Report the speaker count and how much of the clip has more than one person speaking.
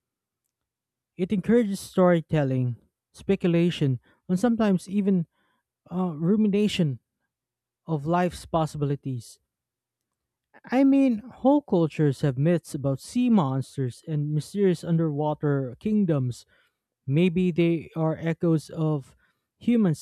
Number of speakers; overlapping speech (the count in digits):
1, no overlap